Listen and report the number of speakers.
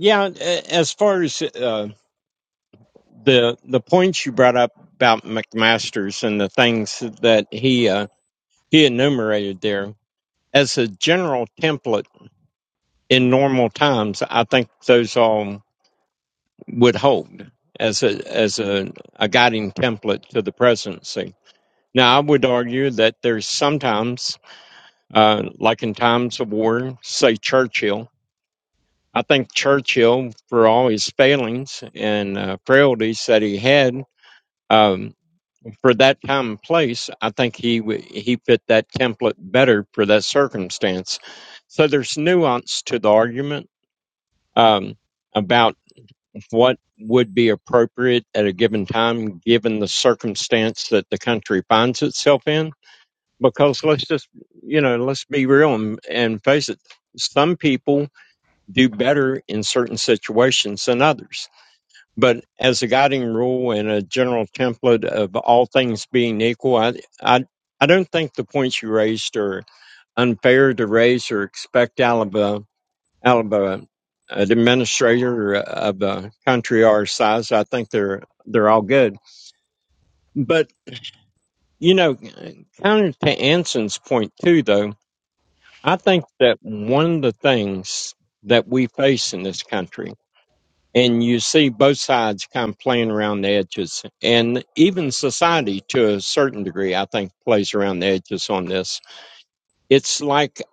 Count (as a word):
one